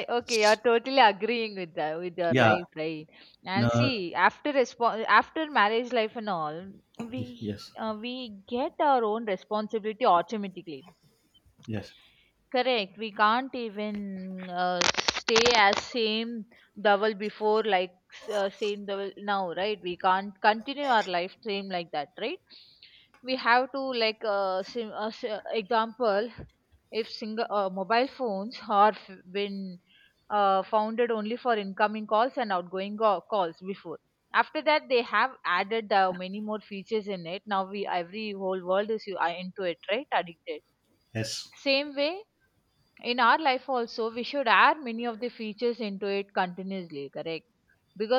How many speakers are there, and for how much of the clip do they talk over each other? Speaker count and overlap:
two, about 2%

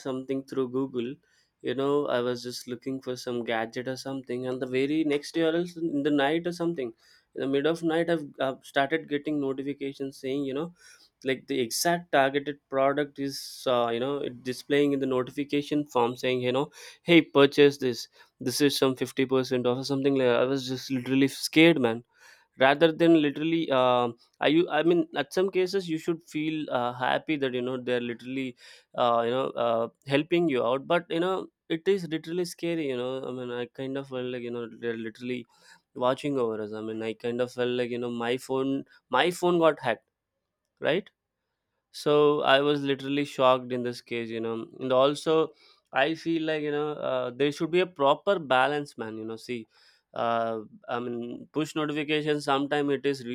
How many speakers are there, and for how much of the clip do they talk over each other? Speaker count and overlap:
one, no overlap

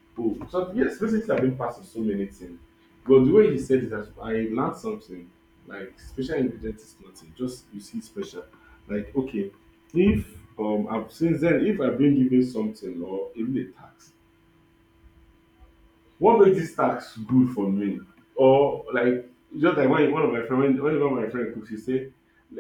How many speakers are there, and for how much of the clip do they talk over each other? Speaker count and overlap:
one, no overlap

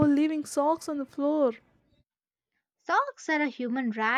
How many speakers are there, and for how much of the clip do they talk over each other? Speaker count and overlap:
two, no overlap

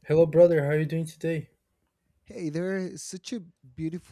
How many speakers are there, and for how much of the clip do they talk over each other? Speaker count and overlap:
two, no overlap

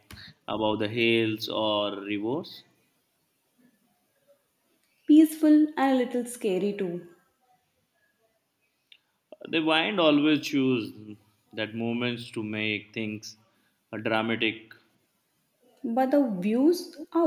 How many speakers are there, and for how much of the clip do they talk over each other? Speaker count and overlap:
two, no overlap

